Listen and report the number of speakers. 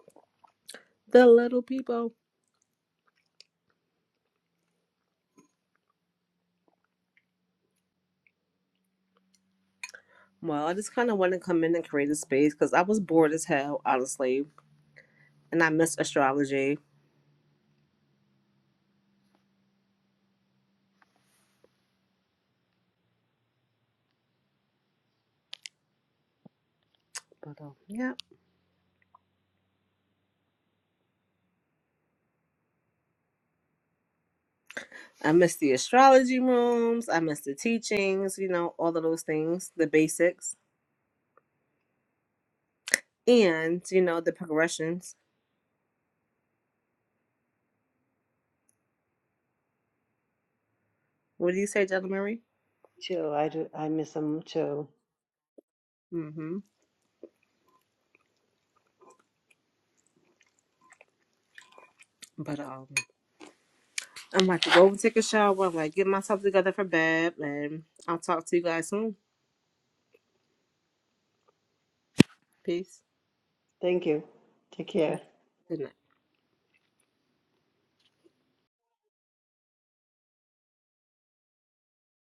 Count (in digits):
2